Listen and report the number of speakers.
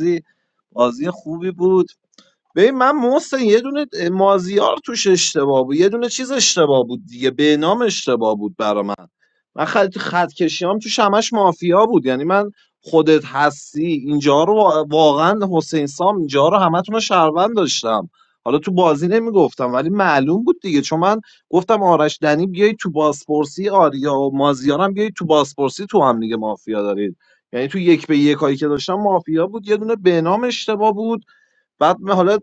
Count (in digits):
1